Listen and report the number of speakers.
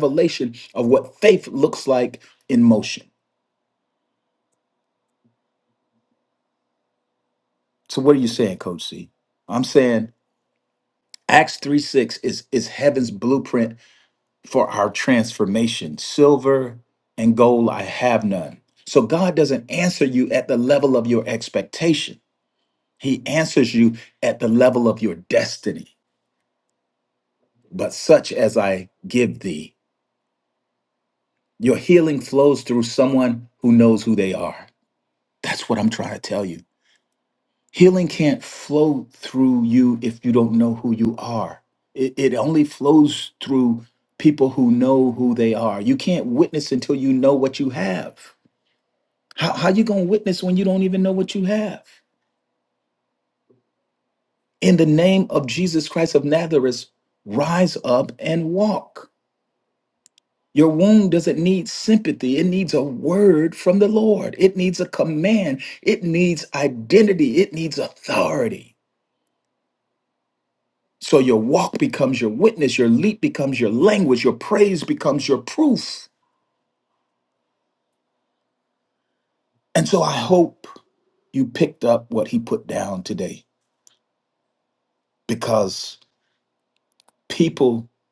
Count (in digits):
1